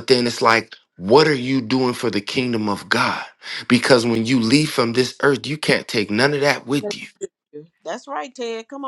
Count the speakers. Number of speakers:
2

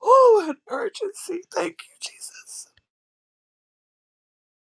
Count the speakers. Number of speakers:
1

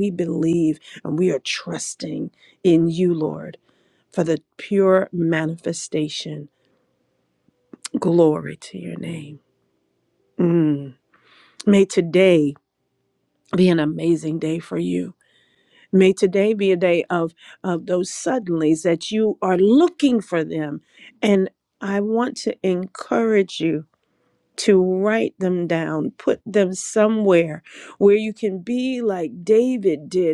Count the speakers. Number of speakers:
1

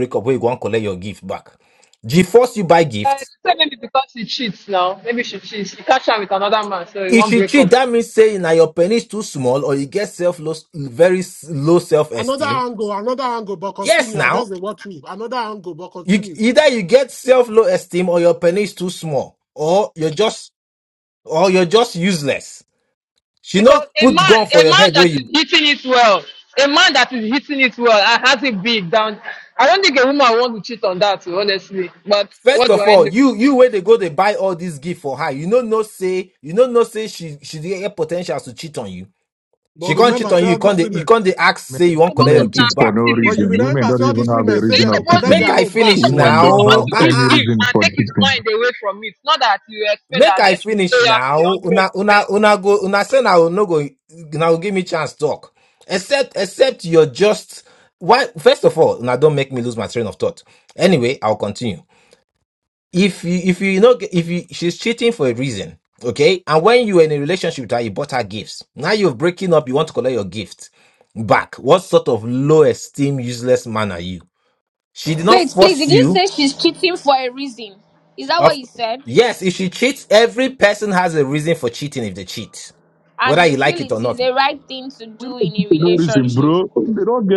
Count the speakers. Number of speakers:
5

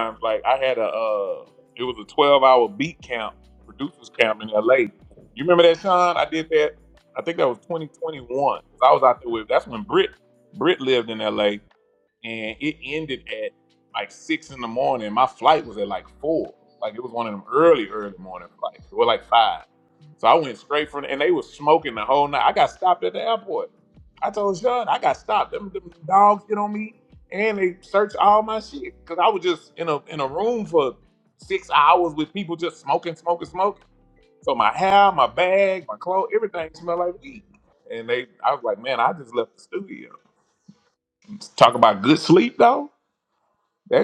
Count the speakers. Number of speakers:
1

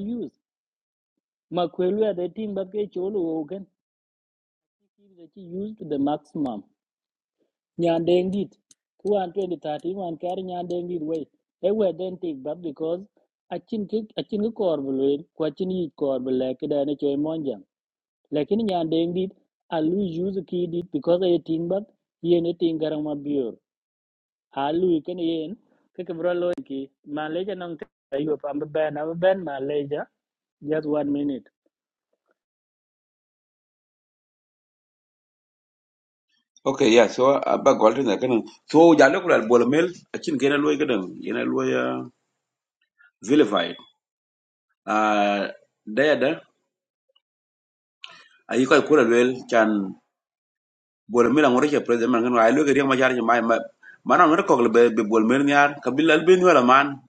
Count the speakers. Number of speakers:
2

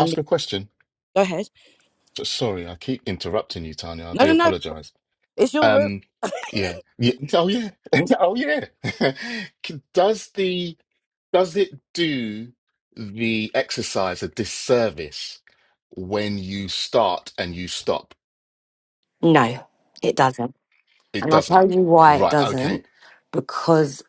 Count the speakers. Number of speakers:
3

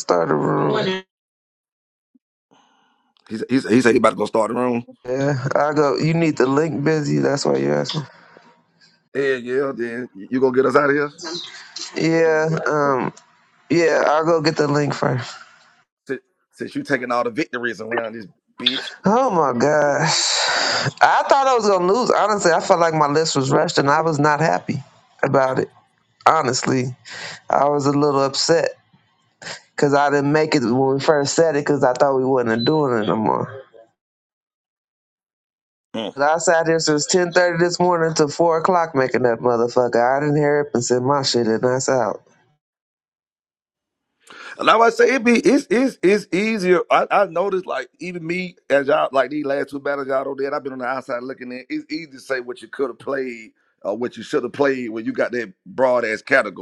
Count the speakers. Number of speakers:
2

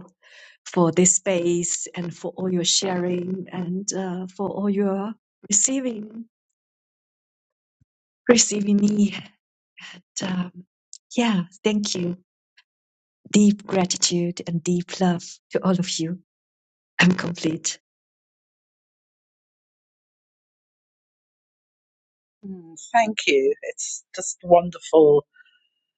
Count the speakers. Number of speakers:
2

